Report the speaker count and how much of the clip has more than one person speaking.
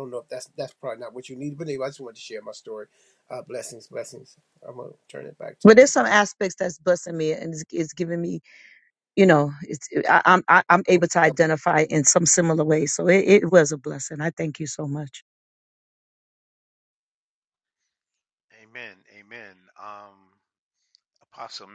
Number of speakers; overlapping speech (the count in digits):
3, about 3%